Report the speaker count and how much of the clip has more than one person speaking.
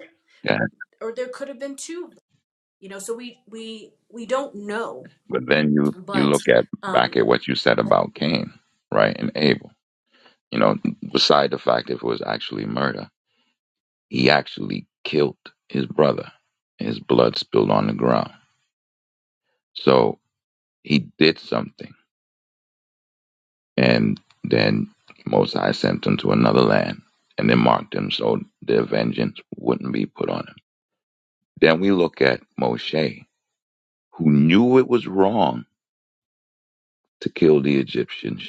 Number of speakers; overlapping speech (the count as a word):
two, about 1%